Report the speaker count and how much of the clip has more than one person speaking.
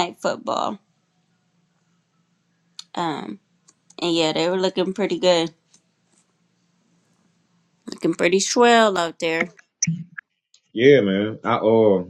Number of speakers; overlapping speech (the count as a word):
two, no overlap